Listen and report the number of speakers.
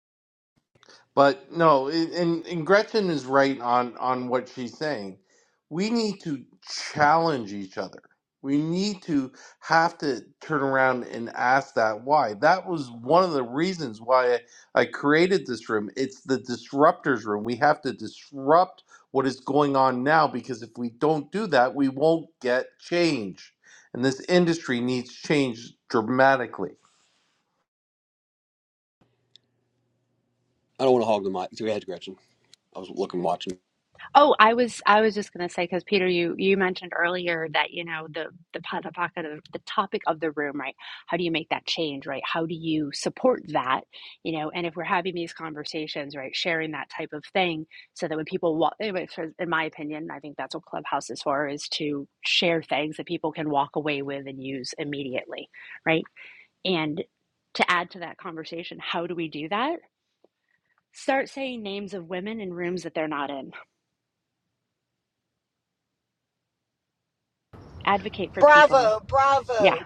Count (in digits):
4